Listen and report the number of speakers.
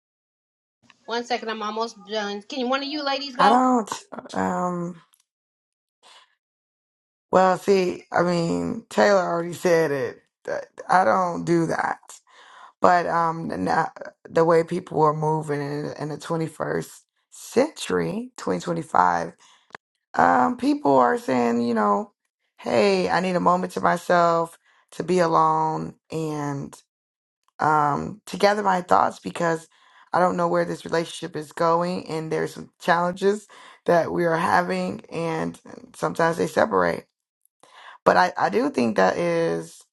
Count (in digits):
2